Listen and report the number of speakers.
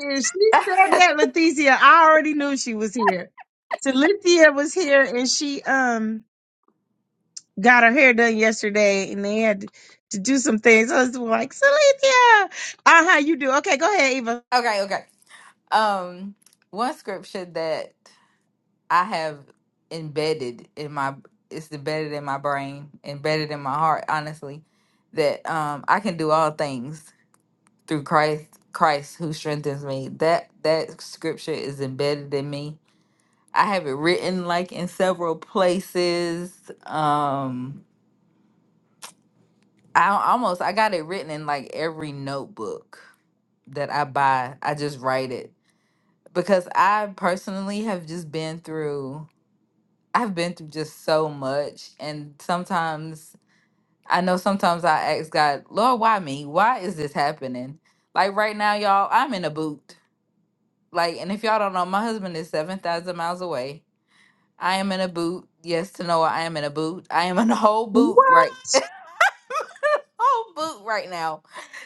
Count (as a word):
two